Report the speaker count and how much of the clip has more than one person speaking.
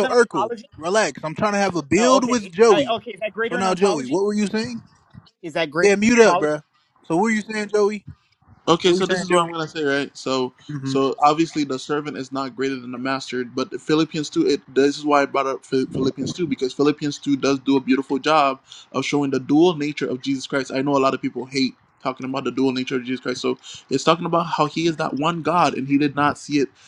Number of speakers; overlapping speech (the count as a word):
three, about 12%